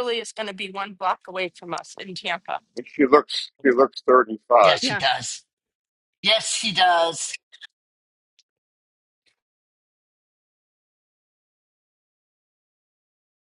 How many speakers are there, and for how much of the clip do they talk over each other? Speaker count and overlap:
three, about 3%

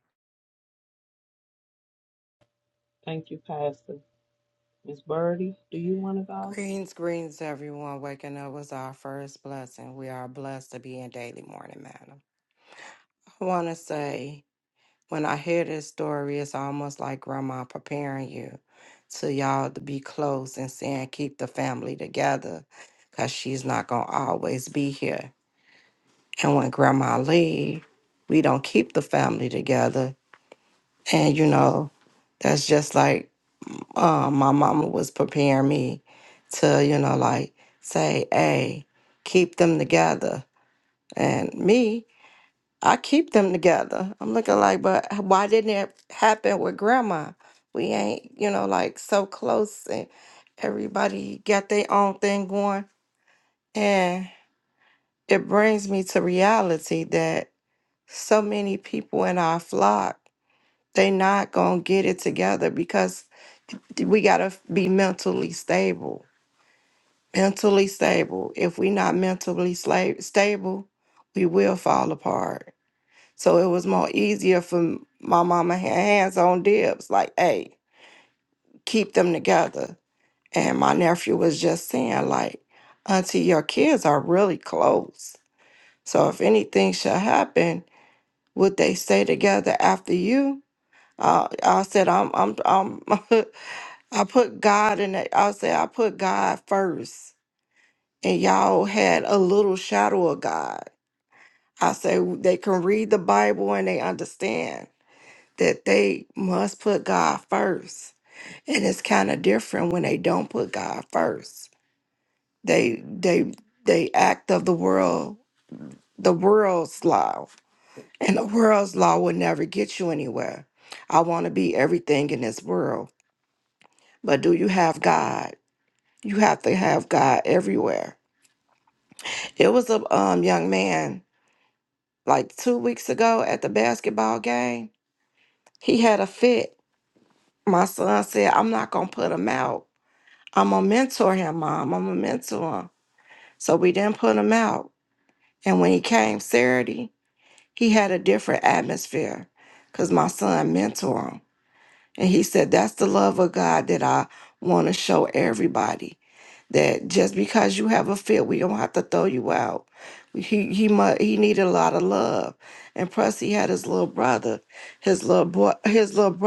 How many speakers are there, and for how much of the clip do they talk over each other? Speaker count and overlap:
two, under 1%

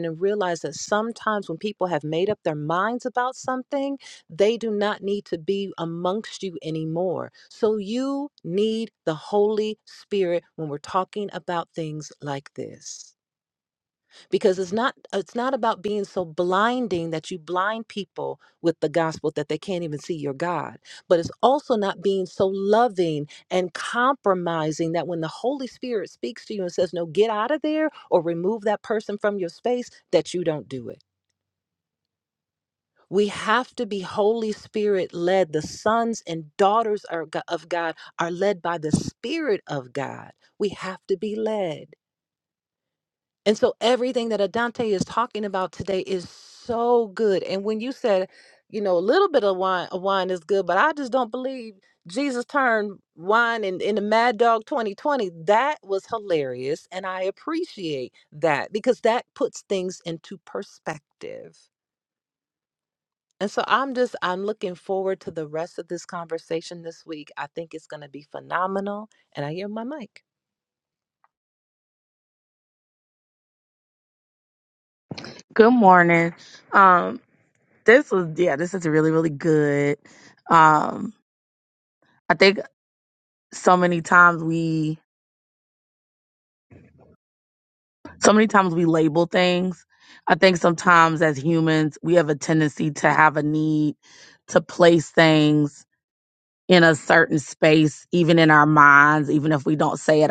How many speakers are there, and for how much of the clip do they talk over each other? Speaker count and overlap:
two, no overlap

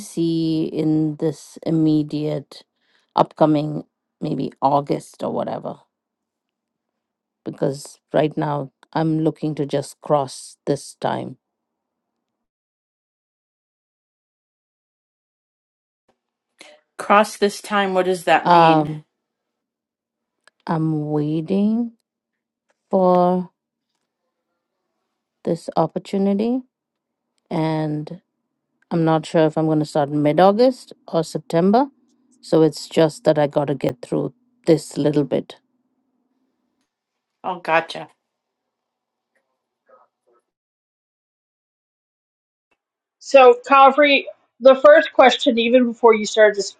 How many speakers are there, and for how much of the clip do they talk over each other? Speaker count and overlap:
three, about 1%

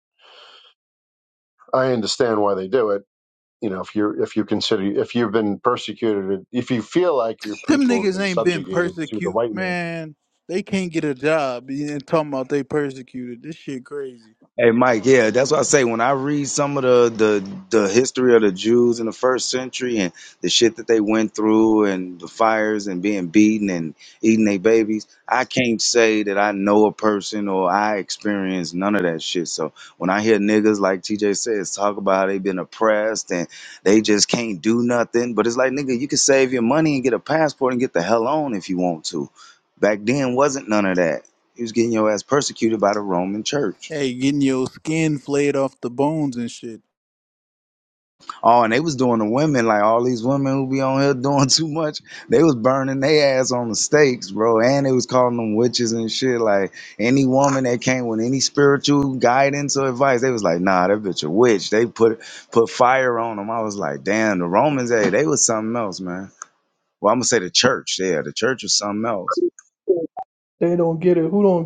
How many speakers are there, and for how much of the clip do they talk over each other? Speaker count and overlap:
four, about 3%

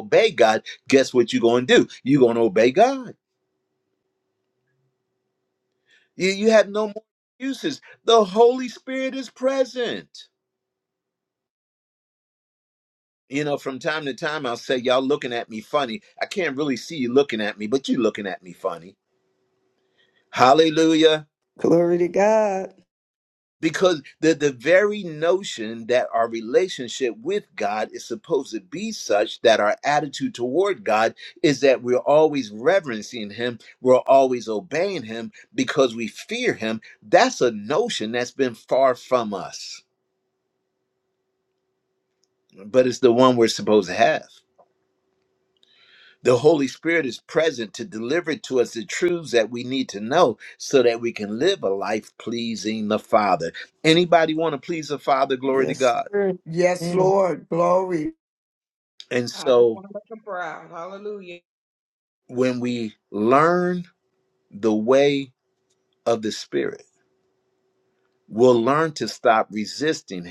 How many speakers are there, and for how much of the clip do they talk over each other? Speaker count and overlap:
four, about 2%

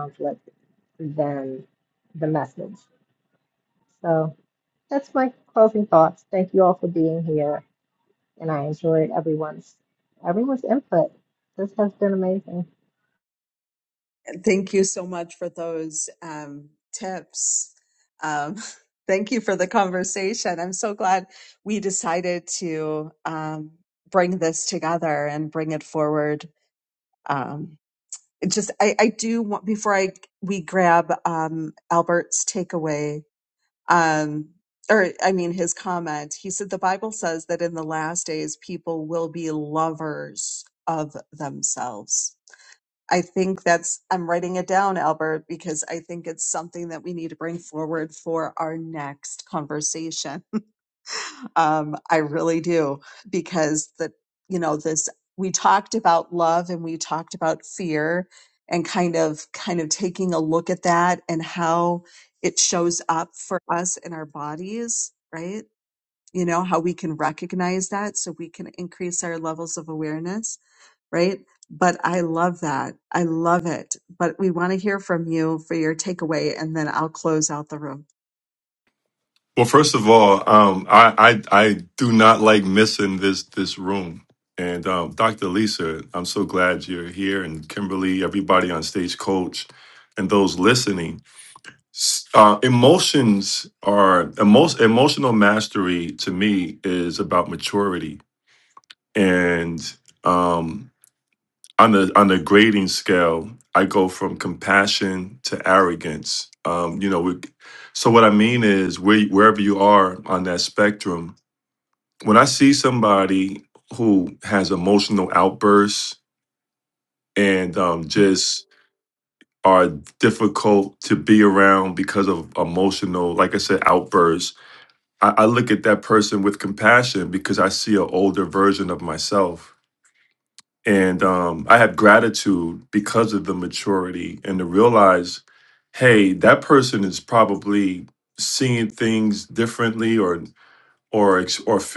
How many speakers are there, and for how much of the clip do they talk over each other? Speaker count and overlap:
three, no overlap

